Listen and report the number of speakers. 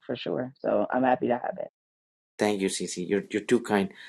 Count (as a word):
two